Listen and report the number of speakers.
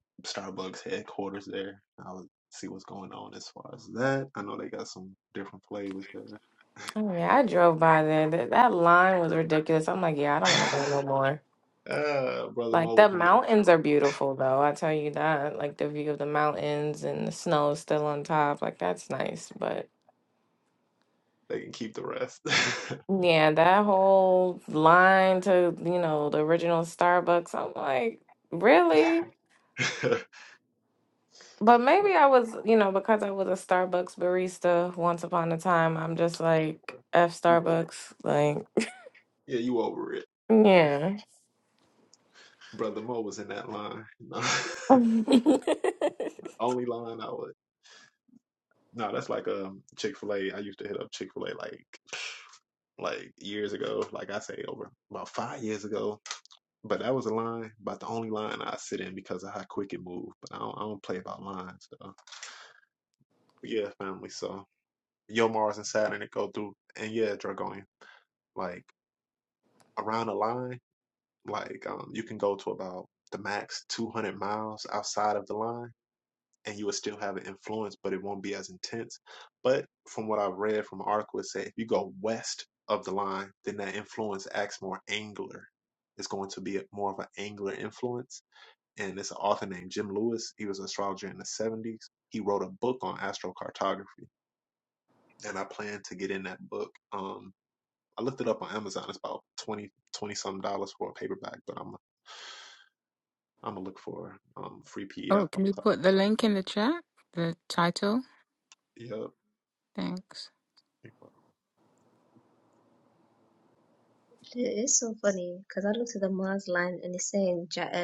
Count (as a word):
four